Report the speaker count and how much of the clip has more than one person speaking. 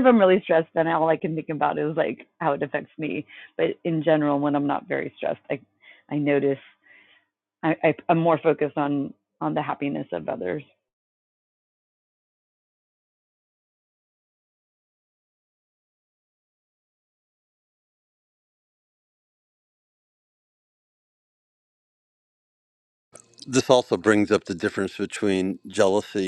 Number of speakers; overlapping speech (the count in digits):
2, no overlap